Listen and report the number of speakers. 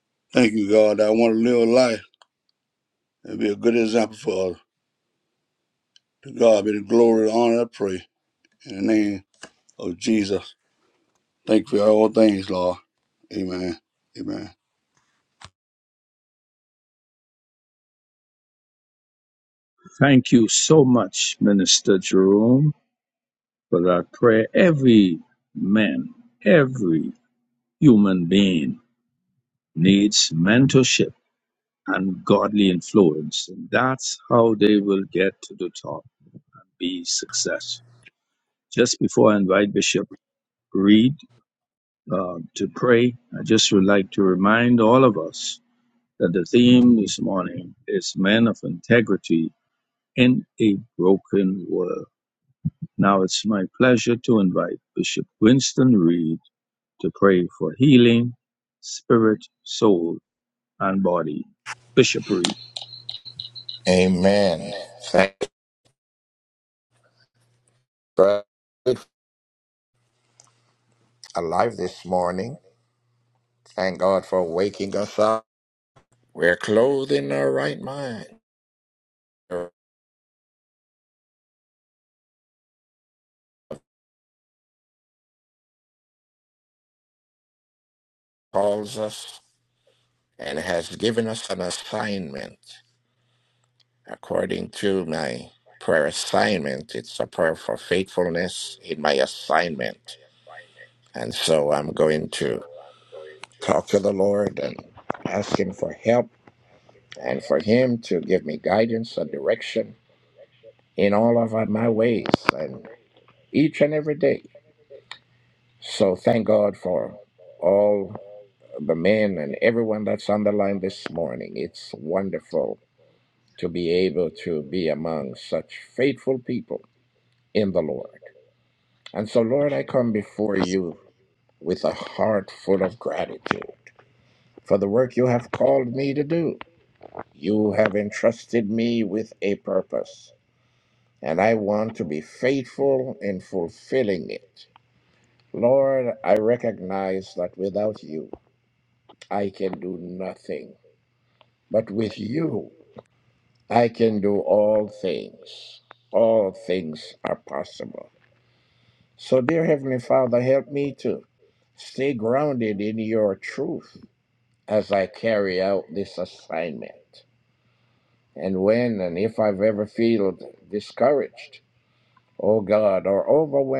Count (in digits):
3